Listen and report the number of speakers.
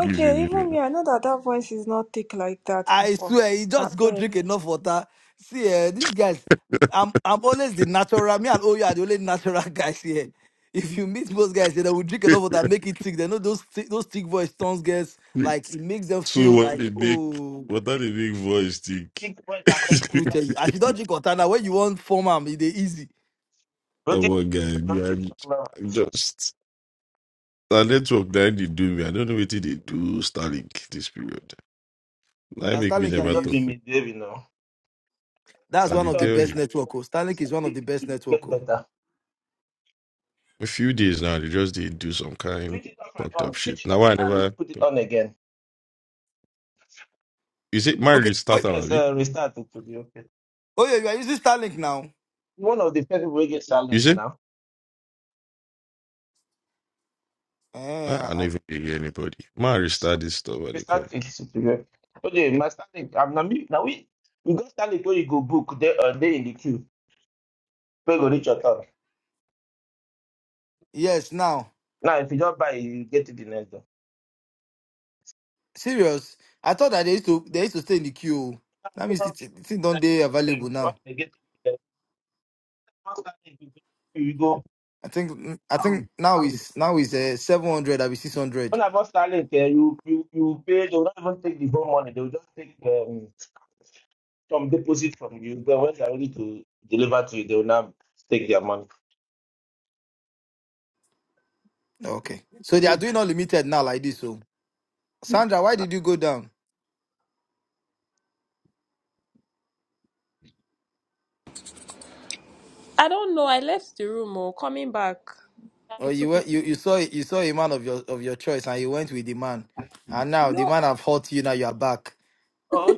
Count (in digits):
5